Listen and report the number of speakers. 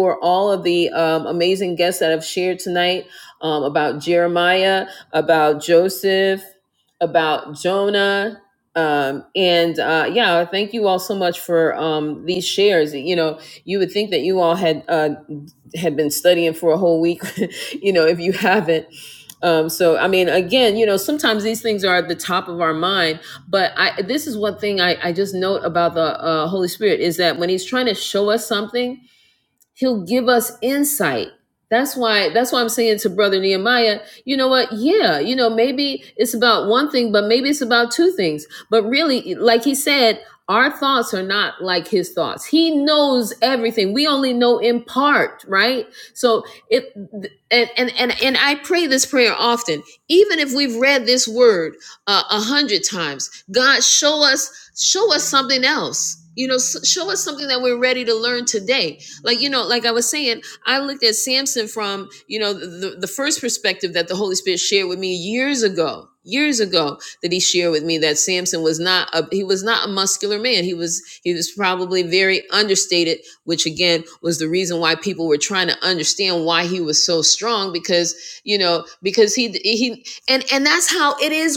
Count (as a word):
one